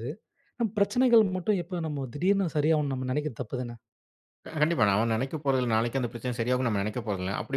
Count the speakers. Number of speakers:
2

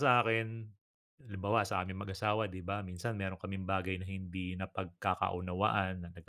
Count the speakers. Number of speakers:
1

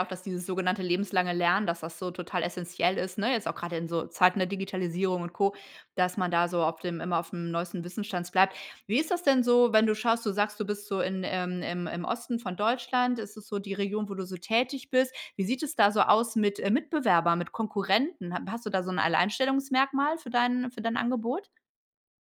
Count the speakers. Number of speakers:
1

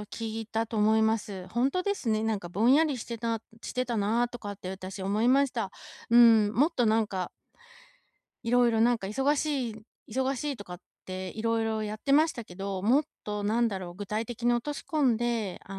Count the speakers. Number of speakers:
1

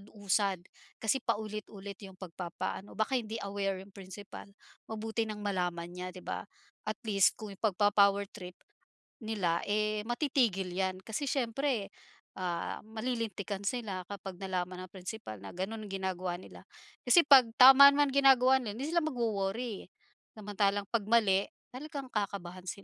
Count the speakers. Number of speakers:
1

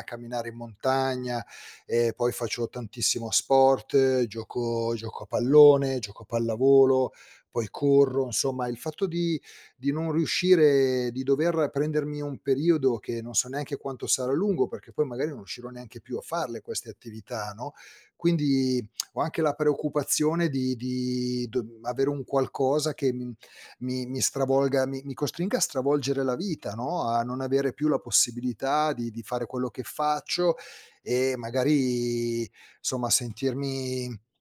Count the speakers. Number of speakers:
1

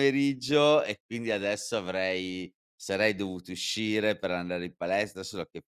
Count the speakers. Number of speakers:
1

